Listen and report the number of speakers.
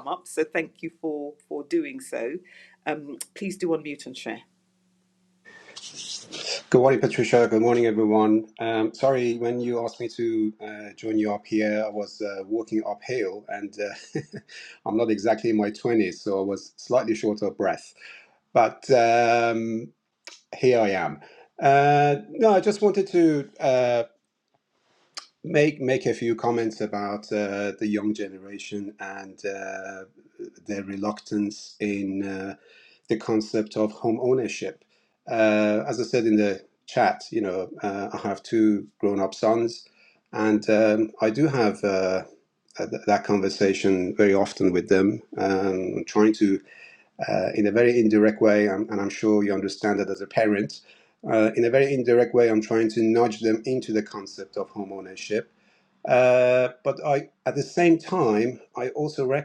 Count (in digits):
2